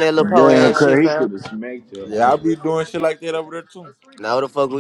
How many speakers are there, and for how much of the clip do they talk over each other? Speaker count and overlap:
three, about 24%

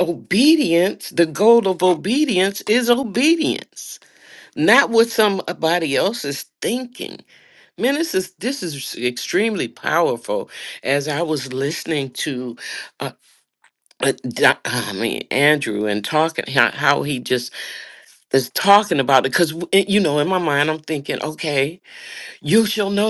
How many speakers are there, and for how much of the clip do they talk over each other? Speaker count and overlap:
one, no overlap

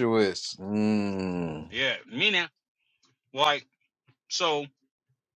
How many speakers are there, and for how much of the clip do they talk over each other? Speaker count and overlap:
two, no overlap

